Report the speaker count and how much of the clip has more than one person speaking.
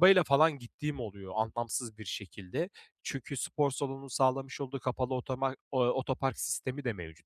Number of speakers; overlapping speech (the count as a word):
one, no overlap